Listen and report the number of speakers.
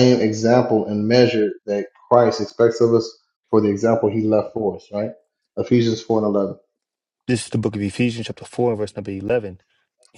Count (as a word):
two